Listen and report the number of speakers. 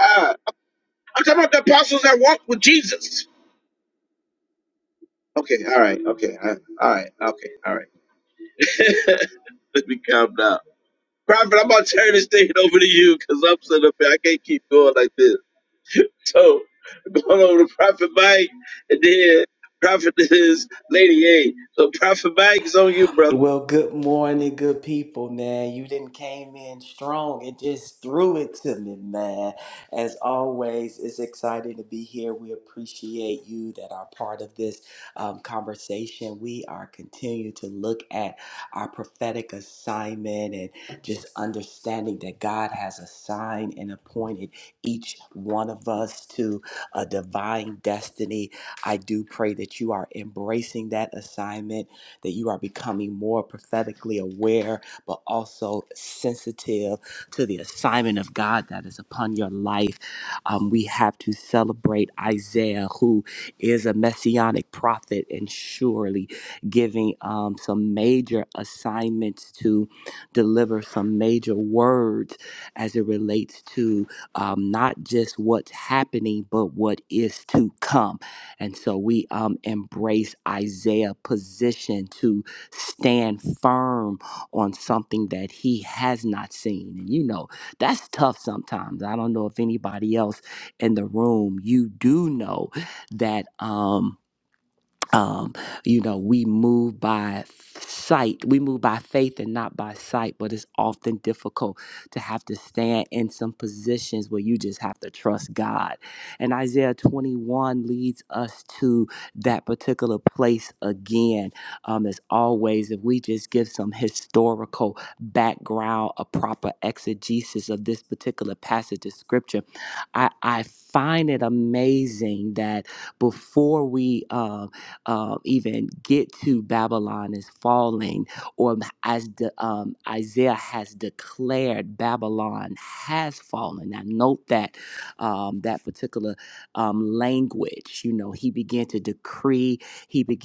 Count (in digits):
2